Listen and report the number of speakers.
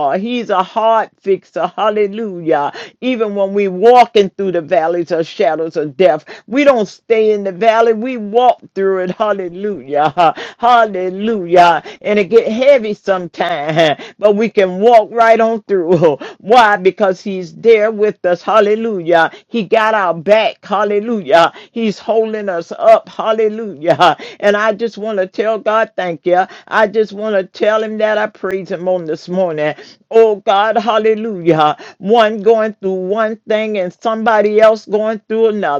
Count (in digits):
1